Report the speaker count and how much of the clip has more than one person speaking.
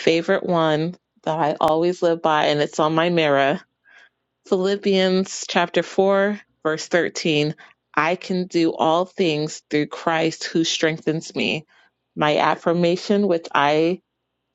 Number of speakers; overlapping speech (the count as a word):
one, no overlap